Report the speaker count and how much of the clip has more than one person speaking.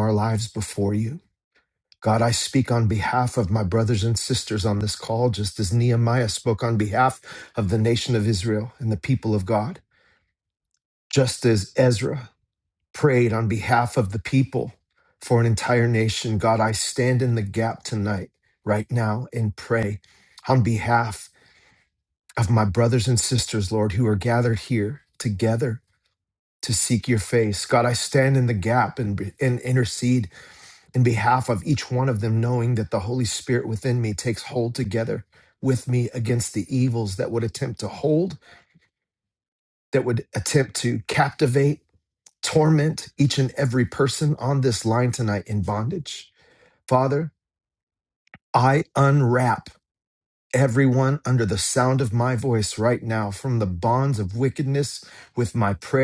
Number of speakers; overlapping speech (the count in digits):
1, no overlap